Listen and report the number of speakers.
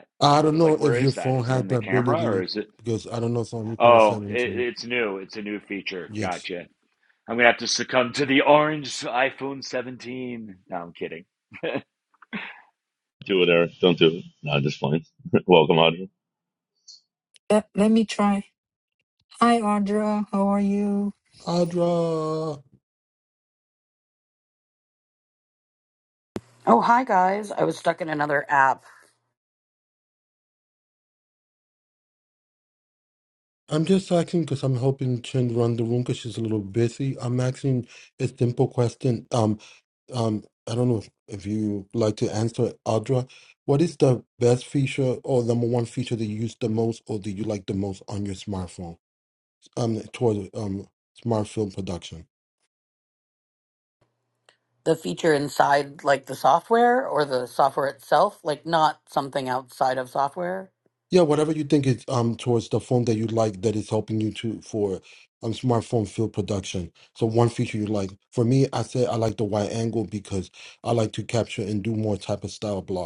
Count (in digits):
5